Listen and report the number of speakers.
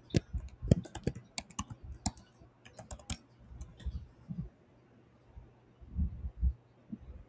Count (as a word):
zero